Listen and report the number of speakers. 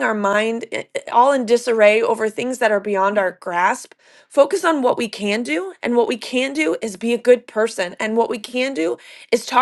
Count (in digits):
1